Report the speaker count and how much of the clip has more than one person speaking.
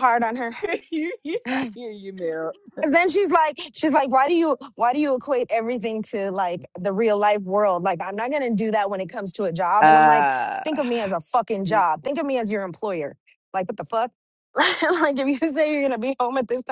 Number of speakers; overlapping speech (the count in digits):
2, about 5%